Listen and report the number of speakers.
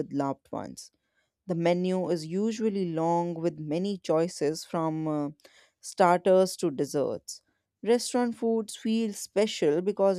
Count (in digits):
1